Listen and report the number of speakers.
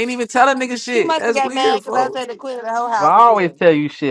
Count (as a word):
three